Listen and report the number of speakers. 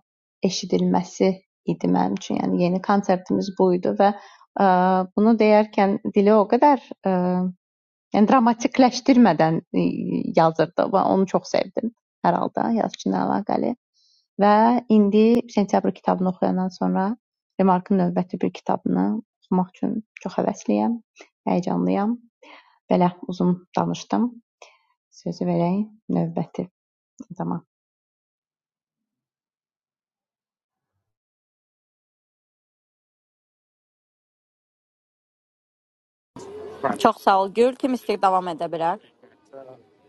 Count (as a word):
two